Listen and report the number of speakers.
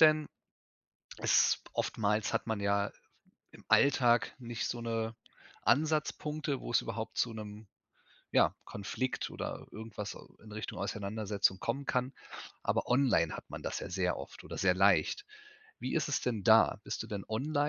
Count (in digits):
1